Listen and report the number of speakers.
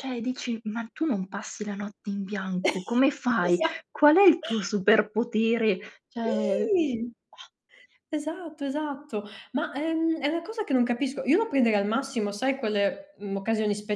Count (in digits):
2